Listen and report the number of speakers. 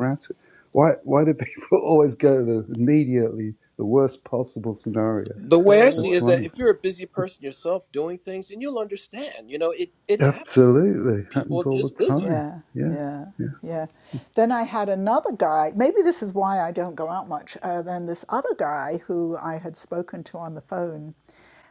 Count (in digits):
3